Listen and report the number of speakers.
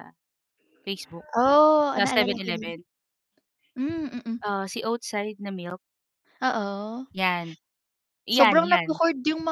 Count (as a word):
two